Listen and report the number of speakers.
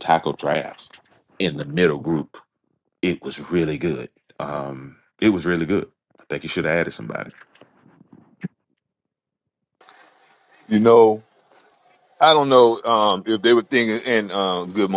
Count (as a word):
two